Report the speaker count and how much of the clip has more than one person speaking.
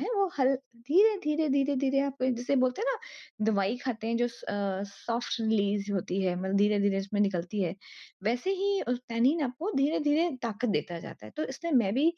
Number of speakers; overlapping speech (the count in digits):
1, no overlap